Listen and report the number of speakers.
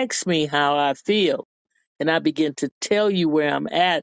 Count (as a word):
one